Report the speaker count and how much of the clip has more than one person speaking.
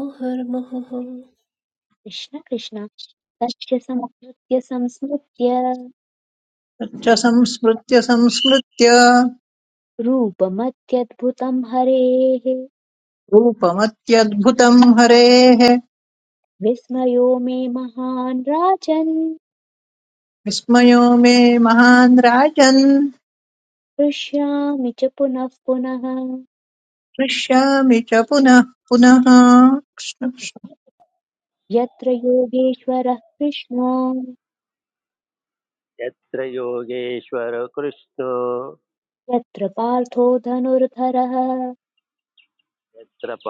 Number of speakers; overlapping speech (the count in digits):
4, no overlap